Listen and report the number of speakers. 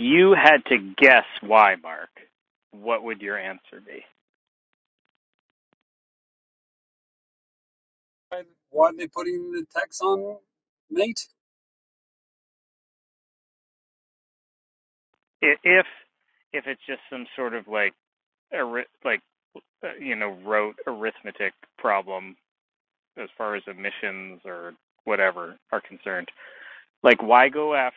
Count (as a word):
two